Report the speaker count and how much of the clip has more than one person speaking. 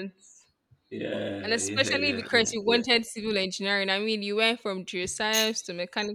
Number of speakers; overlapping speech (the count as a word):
two, about 23%